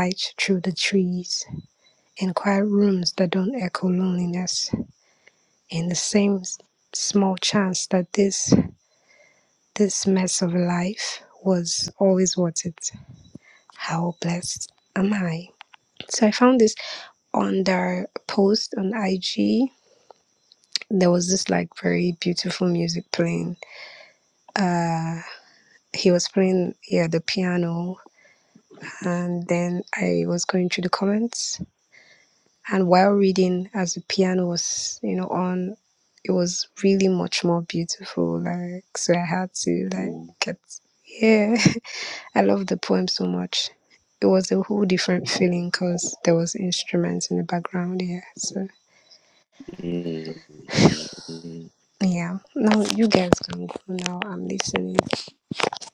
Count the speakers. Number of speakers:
2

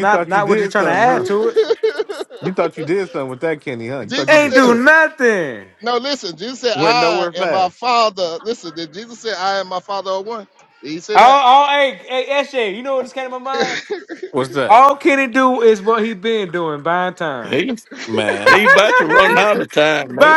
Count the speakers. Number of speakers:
4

